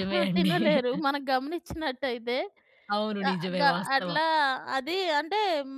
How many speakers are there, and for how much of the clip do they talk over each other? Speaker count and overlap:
two, about 26%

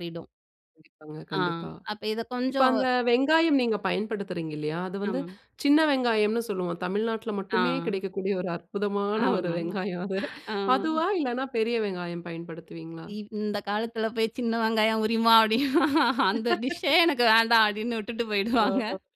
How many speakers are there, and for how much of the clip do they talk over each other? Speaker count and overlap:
two, about 9%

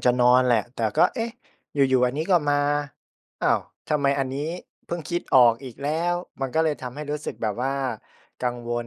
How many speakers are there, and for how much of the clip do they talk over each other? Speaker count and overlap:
one, no overlap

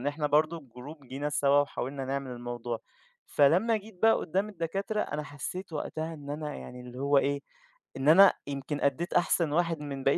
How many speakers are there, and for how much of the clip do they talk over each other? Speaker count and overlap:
one, no overlap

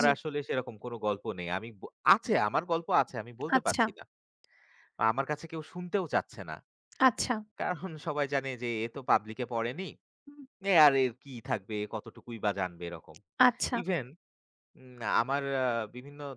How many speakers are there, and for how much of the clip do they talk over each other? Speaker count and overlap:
two, about 3%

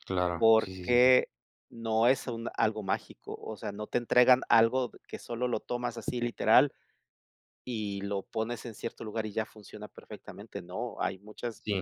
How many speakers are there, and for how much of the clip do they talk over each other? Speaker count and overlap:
two, about 6%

